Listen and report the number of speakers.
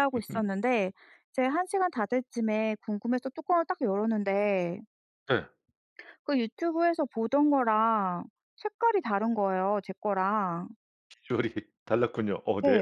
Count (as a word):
two